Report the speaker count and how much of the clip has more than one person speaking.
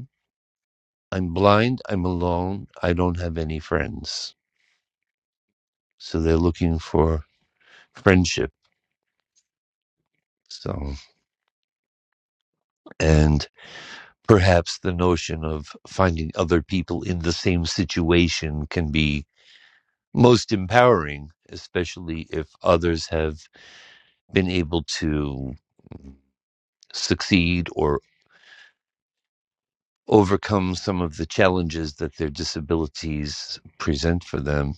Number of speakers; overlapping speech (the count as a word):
one, no overlap